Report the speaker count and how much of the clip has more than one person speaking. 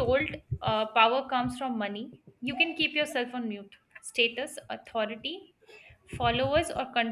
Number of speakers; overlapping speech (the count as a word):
one, no overlap